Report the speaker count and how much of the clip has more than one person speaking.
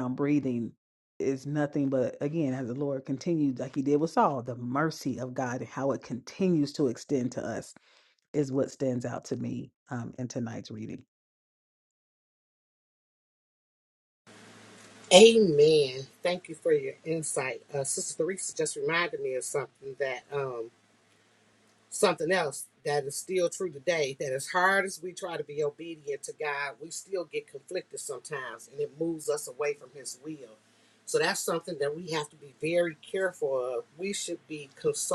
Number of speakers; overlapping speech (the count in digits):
2, no overlap